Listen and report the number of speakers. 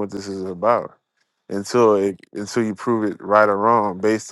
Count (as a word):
one